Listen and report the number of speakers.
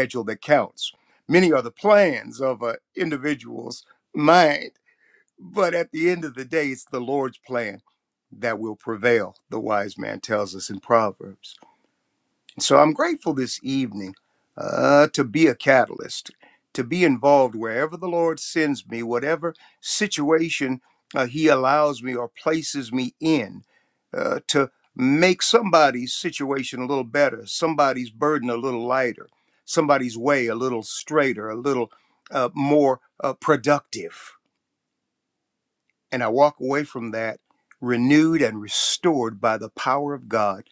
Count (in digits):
1